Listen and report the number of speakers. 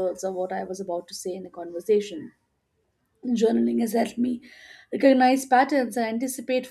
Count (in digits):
1